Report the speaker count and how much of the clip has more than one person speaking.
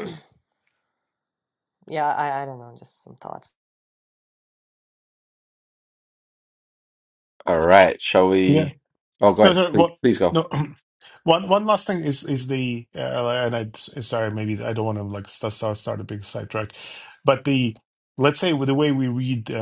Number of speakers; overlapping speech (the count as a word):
three, about 4%